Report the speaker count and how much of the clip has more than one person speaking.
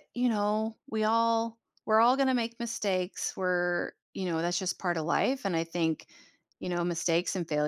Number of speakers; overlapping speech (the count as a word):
one, no overlap